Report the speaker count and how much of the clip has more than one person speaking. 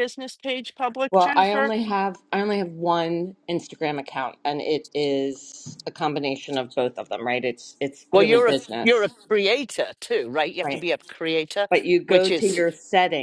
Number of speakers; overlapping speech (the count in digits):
3, about 16%